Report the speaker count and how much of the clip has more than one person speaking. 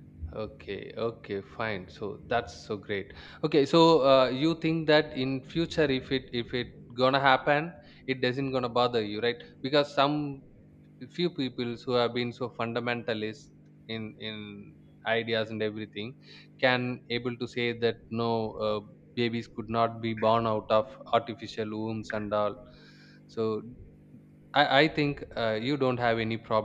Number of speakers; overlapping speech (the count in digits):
1, no overlap